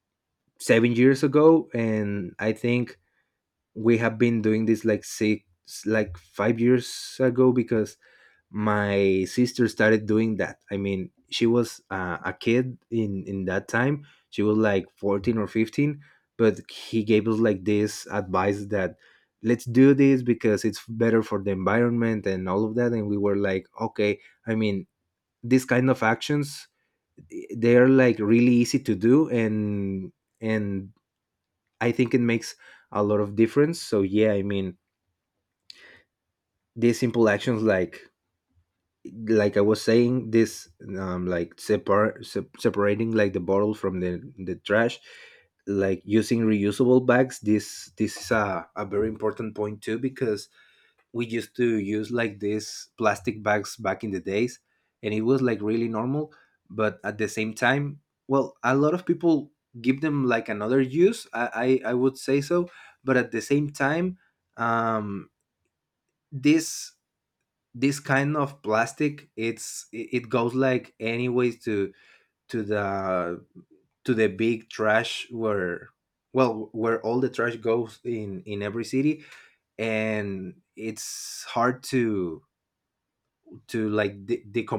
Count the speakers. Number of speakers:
1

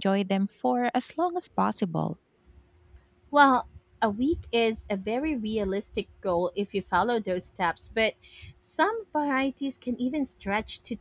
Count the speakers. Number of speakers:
2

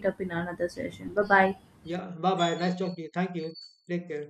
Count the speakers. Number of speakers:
2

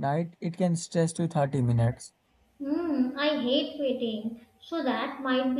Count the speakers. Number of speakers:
2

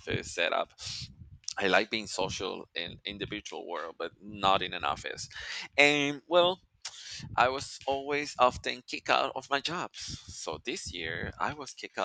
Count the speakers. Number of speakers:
1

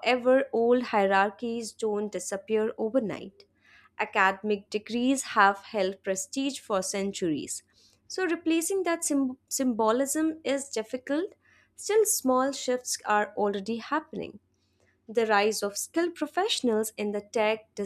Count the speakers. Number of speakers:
1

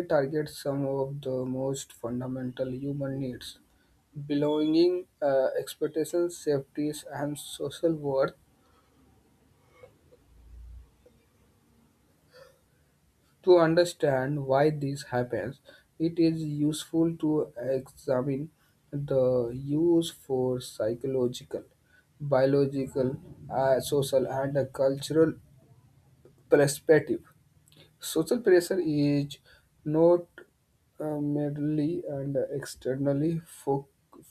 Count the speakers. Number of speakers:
1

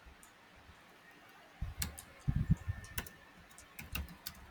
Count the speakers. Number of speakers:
0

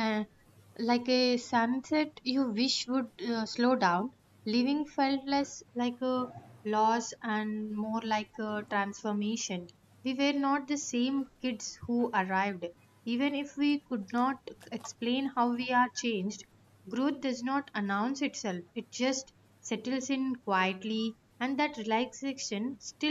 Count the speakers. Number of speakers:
1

